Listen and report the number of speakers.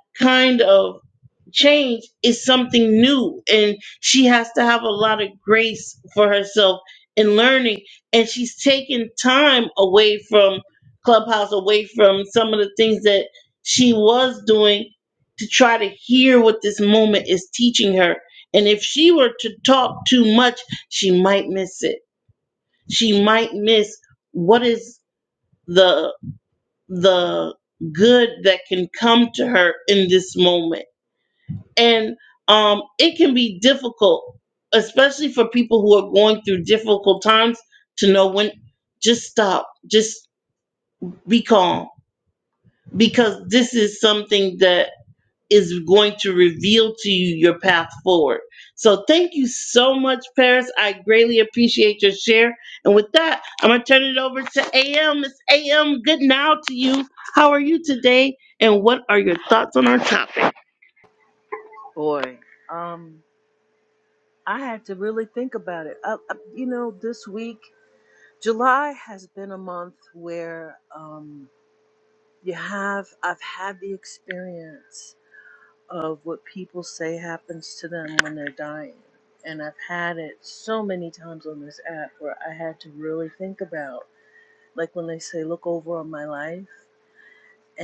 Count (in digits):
2